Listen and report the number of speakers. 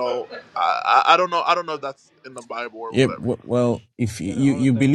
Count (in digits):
2